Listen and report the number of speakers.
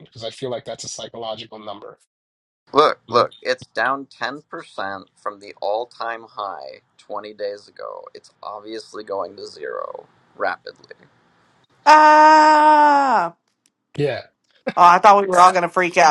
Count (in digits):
3